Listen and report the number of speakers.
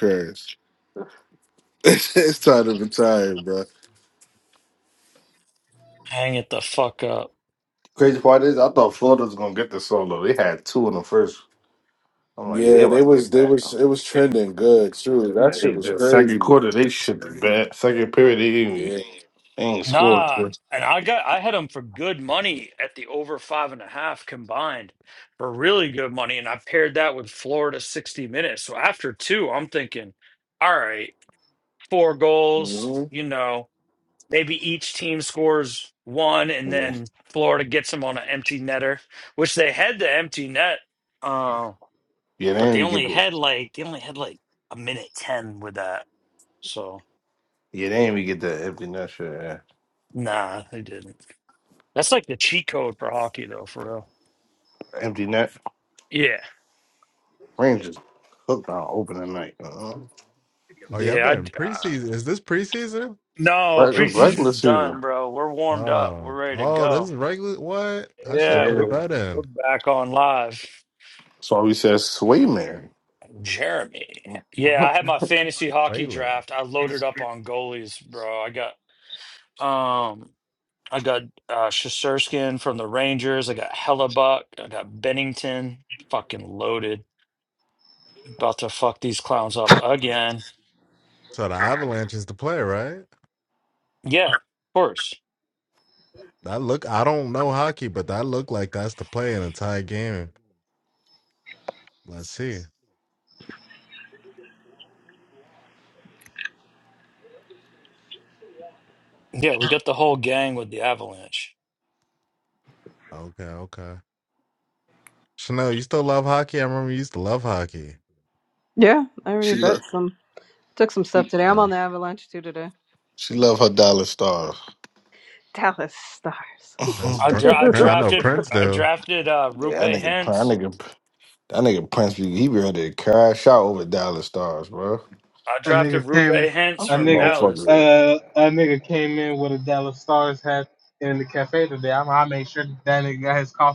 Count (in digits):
6